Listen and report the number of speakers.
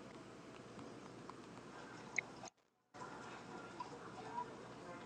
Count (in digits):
0